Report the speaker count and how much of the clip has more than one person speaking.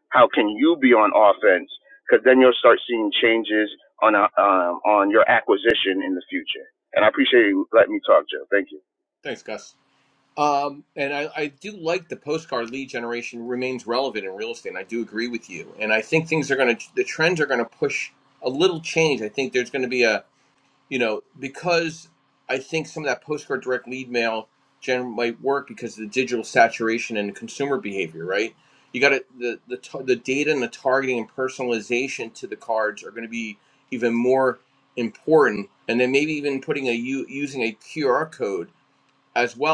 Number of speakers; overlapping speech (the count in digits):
2, no overlap